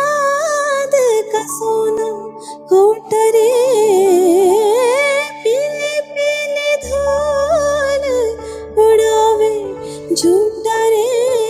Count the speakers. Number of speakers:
1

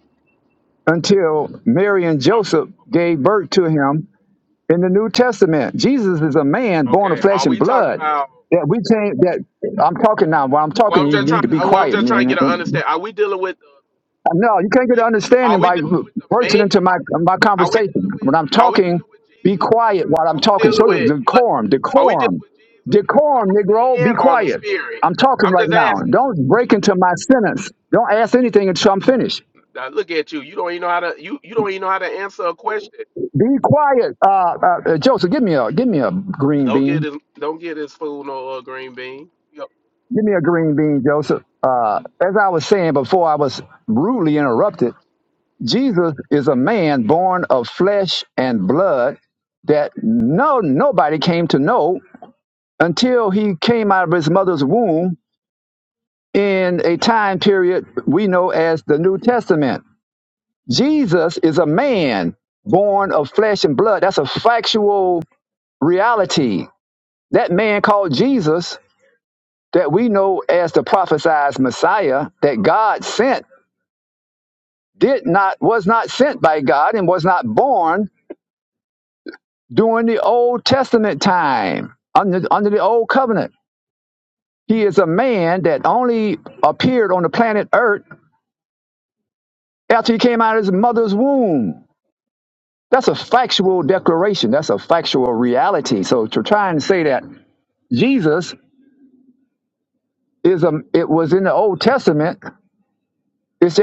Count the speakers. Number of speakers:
2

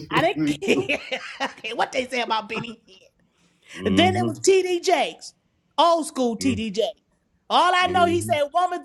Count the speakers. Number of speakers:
2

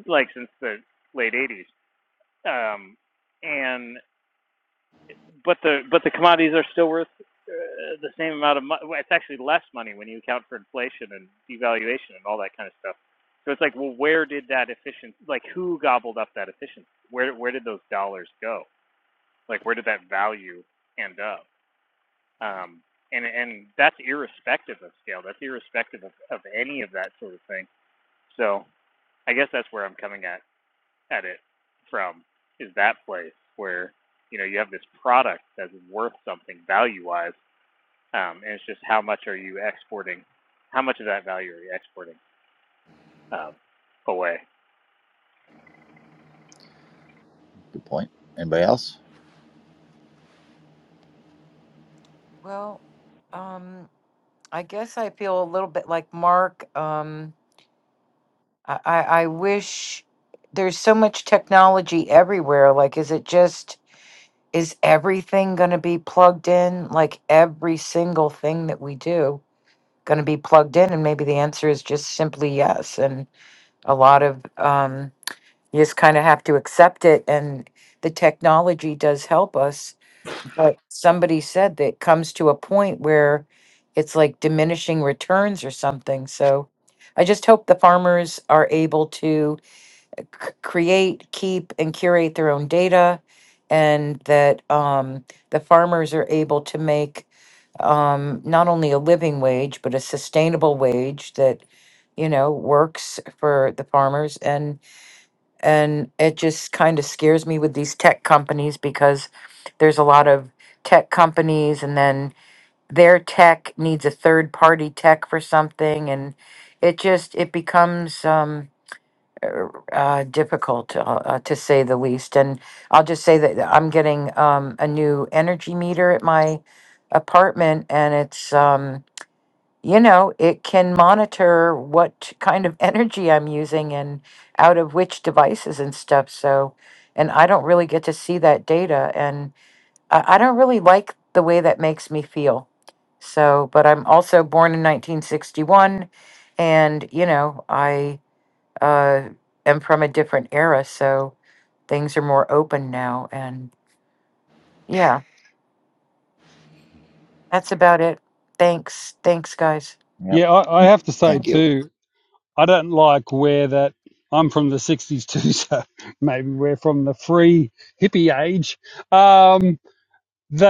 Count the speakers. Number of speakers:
4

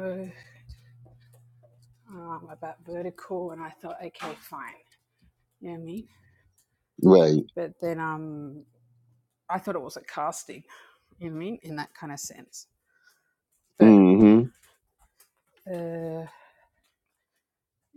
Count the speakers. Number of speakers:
2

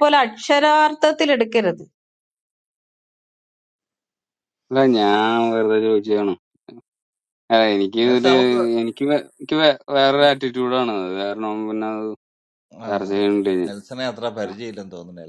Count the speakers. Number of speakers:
3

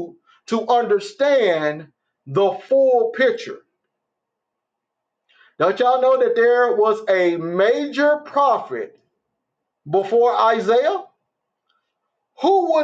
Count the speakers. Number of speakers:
1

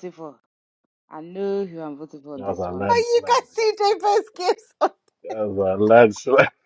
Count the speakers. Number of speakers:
3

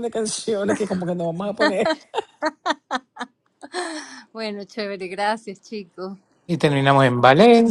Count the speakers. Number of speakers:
3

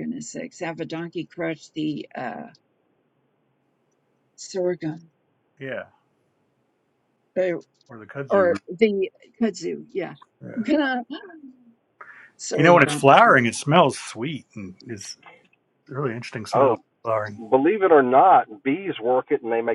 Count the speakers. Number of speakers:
3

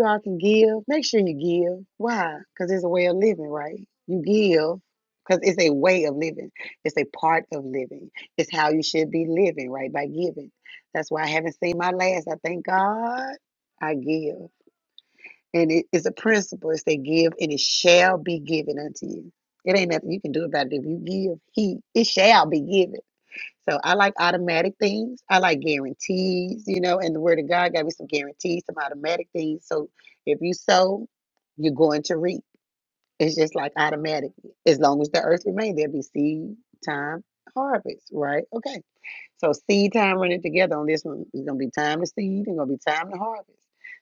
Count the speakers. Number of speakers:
1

